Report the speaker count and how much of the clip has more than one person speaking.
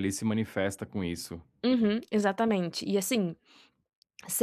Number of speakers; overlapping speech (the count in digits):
2, no overlap